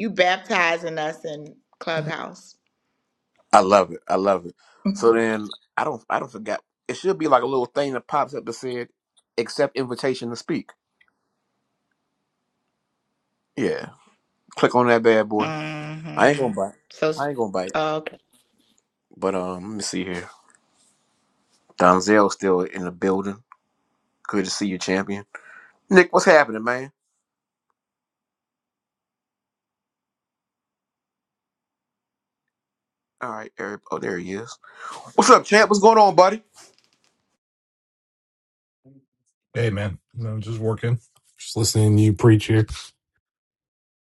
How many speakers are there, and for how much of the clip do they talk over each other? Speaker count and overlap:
three, about 1%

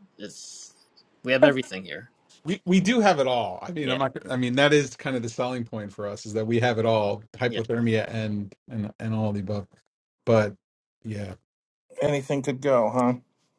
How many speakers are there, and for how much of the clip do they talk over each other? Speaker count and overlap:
three, about 2%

